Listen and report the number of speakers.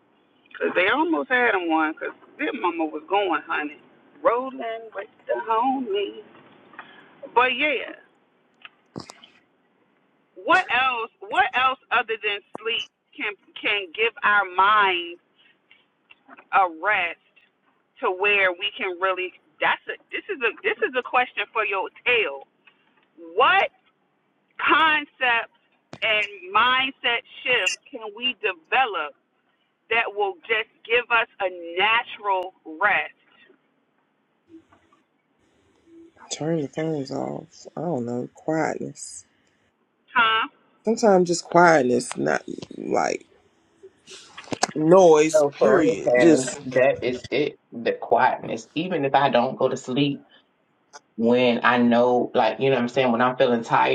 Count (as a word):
three